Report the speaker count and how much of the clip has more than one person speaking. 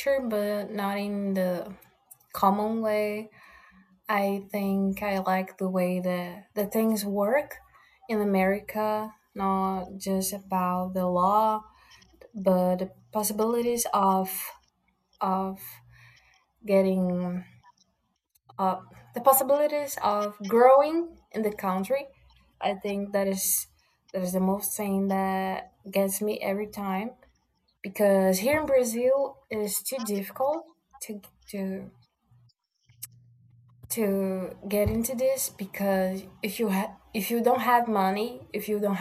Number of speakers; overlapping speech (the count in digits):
1, no overlap